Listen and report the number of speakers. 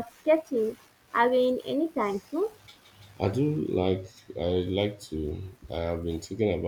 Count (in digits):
2